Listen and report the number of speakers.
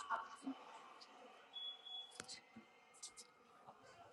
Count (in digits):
0